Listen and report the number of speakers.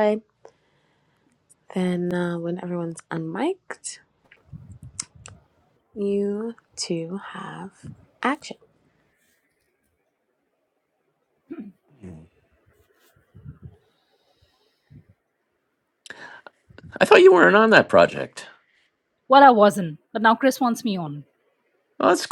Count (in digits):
3